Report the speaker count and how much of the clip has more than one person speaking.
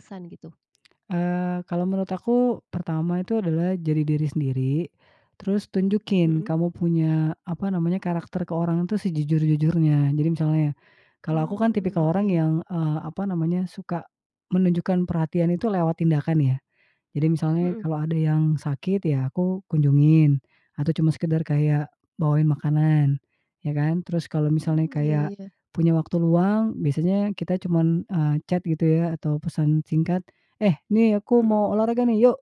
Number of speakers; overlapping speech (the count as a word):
two, about 8%